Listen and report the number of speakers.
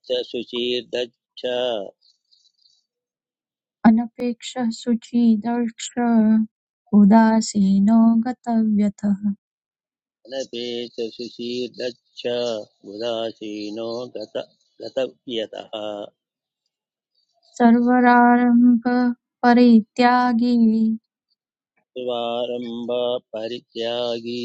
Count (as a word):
two